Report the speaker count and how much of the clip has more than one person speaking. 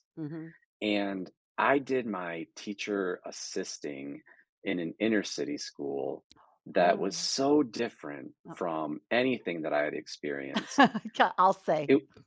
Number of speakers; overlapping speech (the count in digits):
2, about 3%